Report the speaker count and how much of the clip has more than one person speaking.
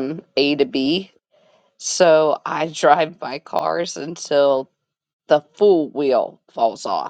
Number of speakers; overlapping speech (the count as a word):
one, no overlap